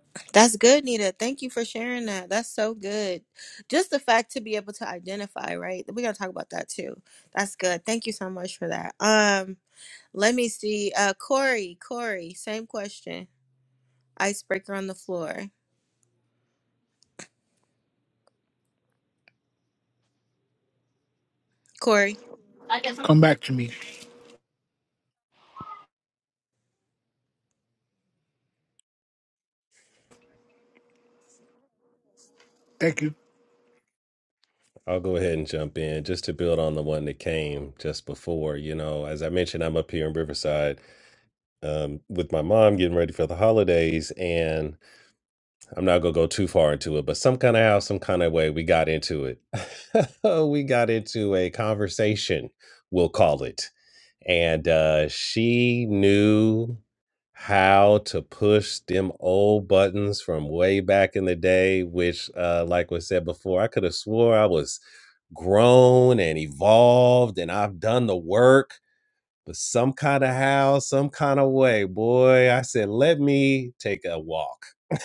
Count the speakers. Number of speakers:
3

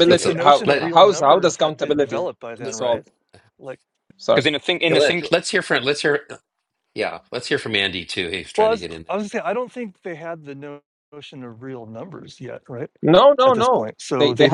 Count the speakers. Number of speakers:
4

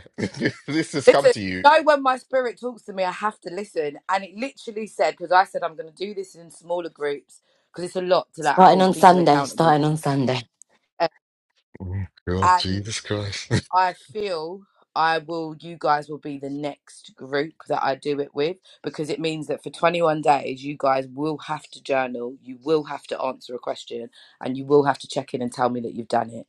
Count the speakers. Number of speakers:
3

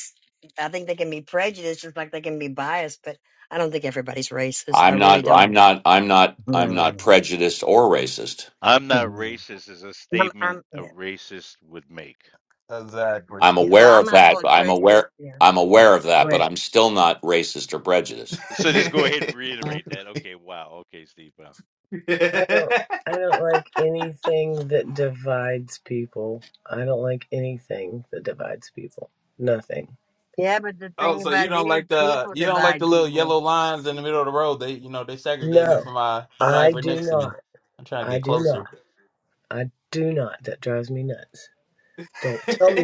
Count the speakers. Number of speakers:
5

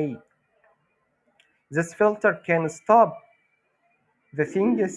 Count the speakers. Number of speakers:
1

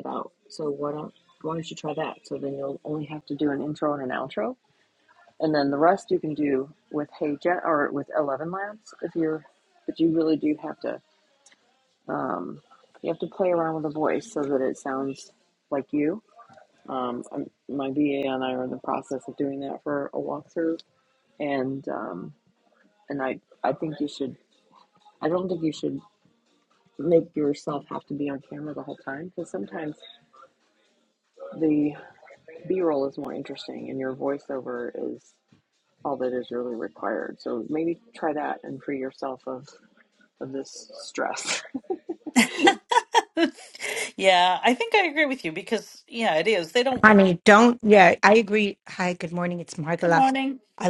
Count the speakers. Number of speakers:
3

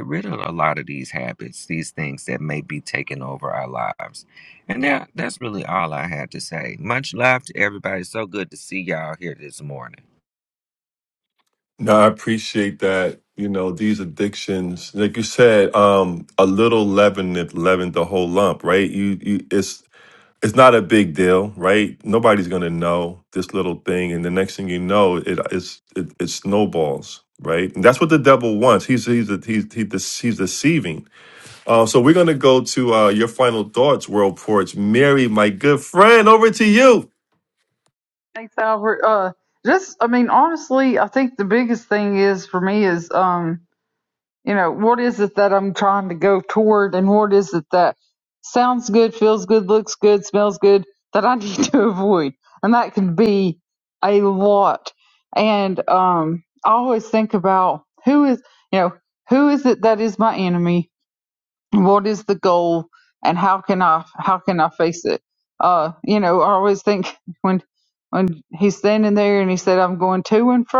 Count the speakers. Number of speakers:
3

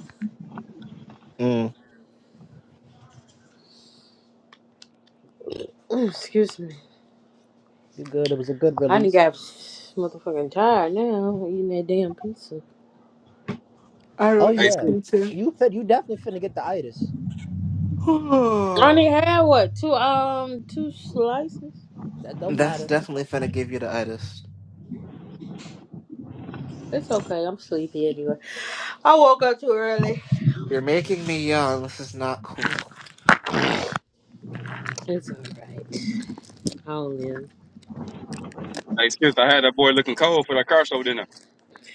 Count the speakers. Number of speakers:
4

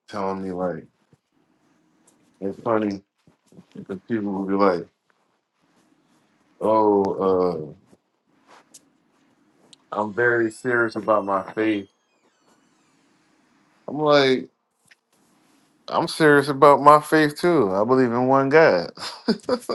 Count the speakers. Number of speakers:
1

